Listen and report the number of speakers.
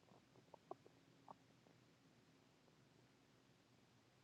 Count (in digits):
0